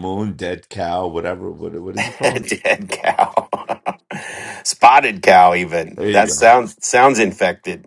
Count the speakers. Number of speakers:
two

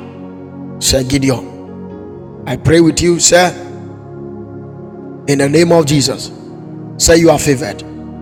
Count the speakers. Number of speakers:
one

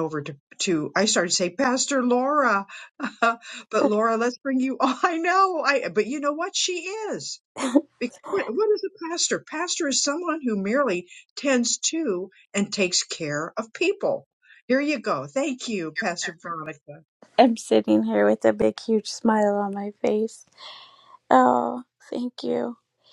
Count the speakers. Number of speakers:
two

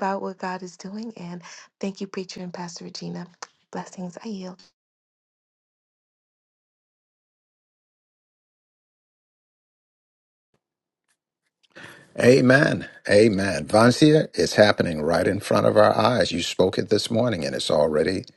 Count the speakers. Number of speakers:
two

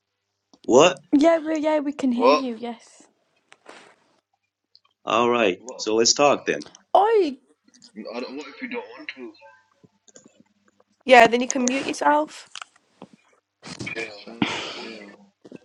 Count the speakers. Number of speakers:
four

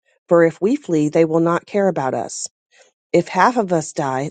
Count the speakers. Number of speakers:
one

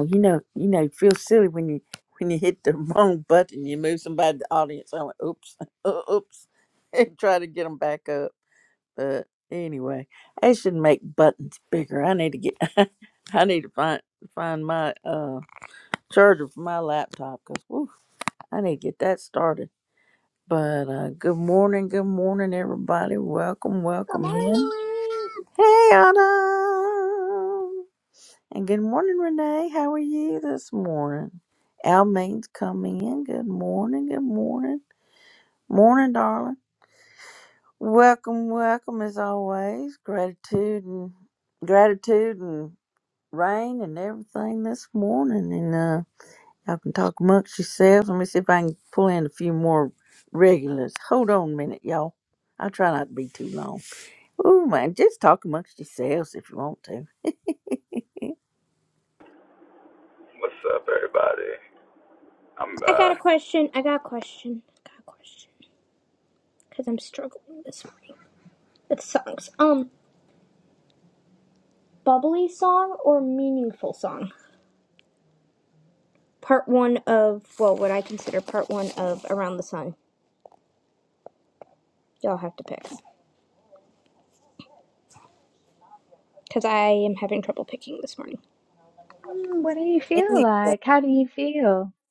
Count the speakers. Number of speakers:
four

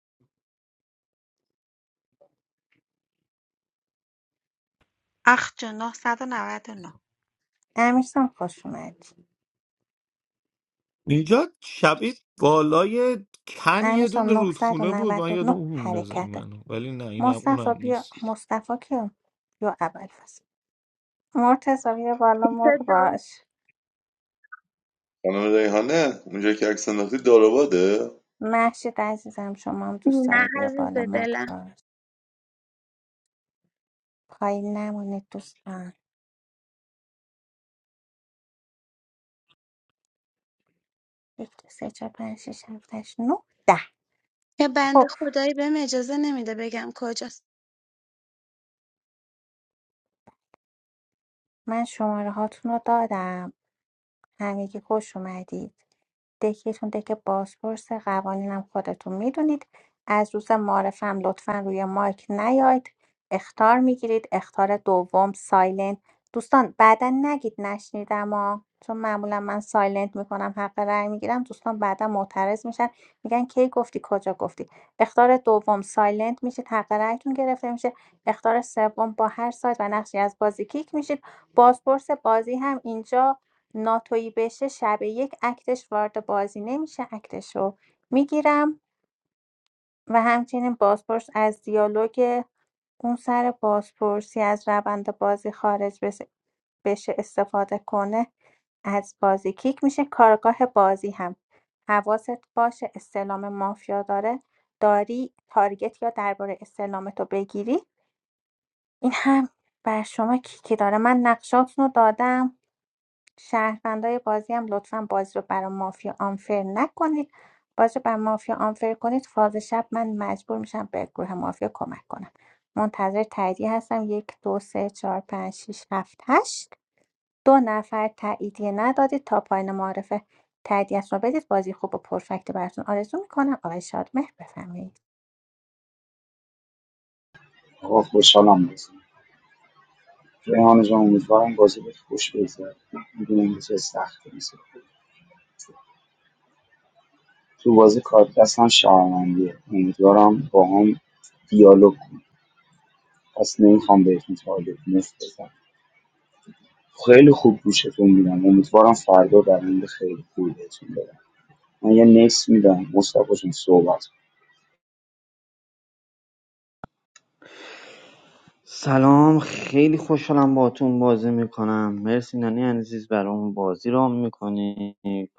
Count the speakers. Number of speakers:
seven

